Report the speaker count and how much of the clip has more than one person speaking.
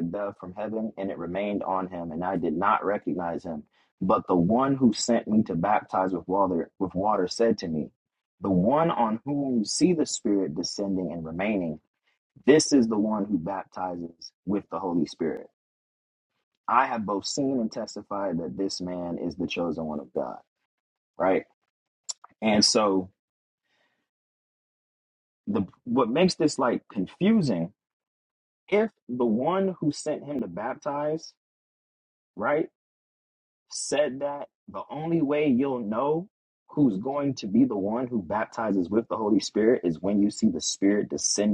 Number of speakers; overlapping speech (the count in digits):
1, no overlap